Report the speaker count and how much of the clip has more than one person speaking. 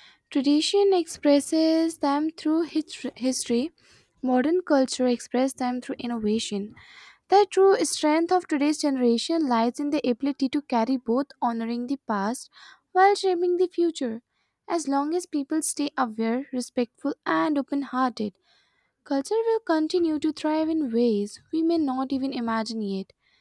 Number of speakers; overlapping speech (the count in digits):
1, no overlap